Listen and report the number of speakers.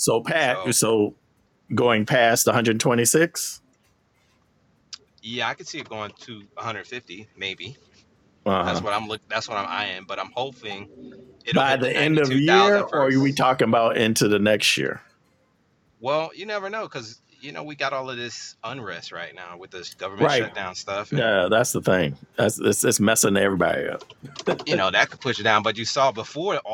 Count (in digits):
2